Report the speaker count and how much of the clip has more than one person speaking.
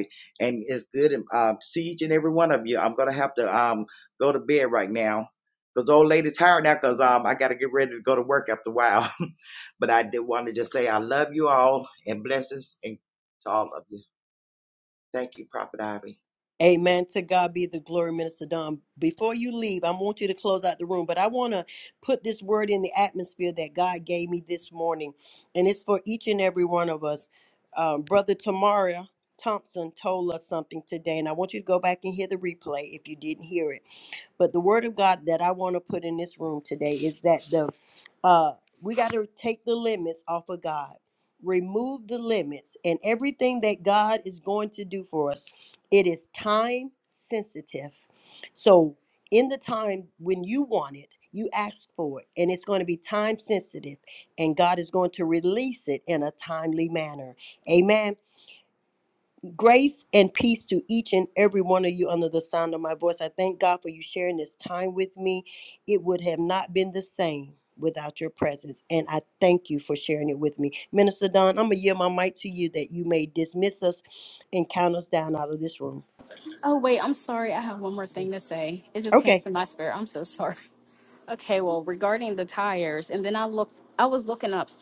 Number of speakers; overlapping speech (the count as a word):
three, under 1%